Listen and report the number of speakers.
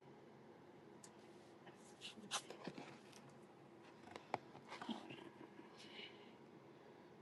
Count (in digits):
0